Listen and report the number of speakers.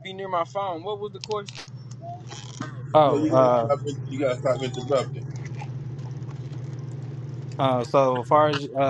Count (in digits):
3